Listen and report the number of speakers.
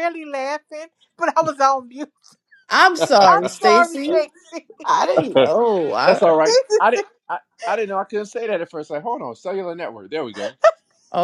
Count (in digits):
3